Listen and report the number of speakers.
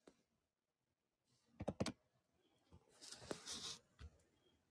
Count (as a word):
zero